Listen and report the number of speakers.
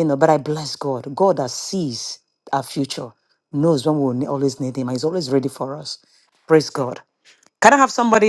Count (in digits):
1